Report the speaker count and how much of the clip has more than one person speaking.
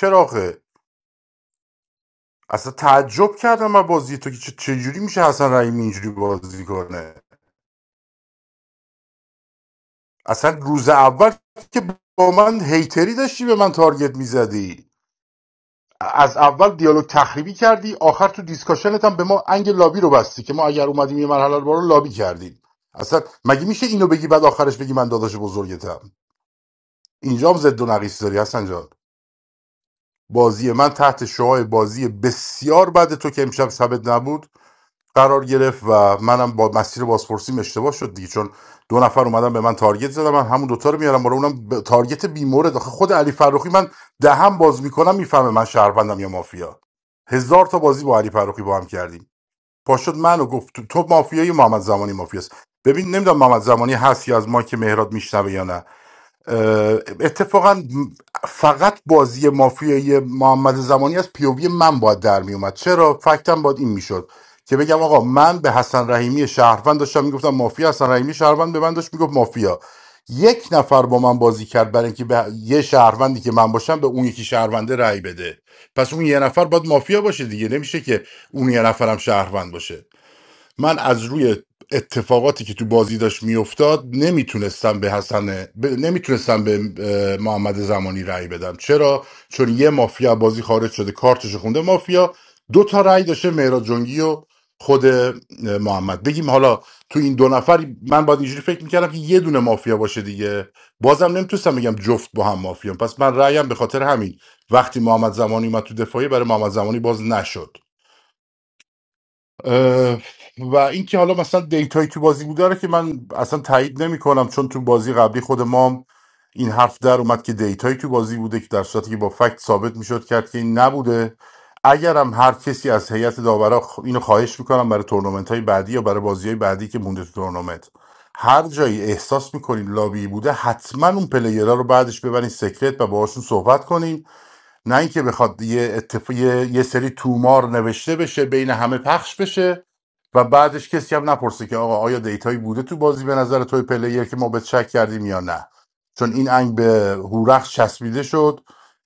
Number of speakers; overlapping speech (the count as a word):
one, no overlap